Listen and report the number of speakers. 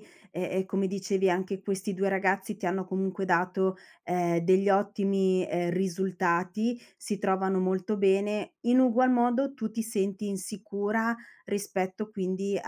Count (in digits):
1